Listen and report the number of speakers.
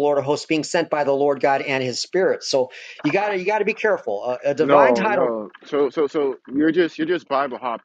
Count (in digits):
2